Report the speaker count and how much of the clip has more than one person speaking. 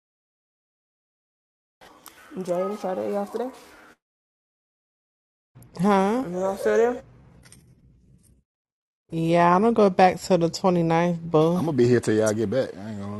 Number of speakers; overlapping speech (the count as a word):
three, about 1%